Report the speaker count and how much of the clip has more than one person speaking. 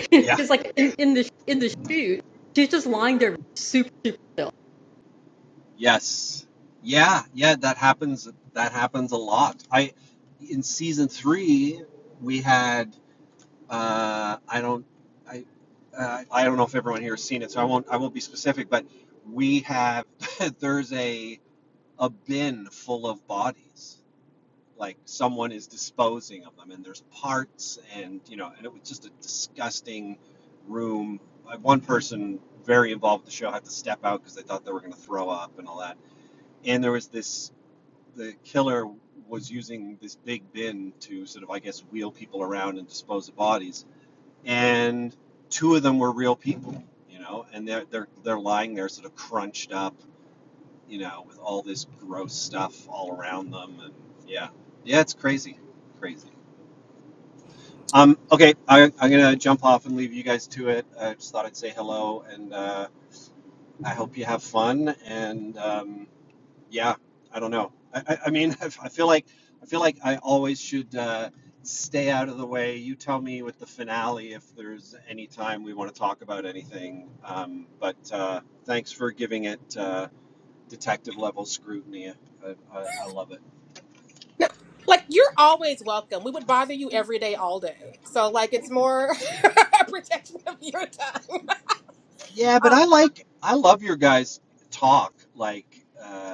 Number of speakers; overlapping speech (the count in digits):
3, under 1%